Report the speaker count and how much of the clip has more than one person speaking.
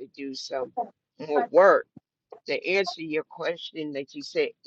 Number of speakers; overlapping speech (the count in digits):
1, no overlap